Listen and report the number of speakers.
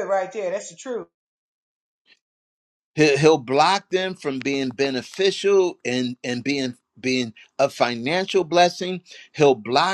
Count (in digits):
2